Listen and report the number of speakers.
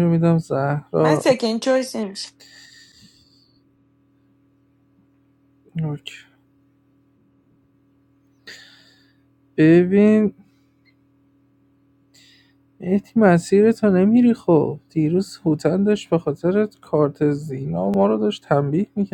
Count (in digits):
2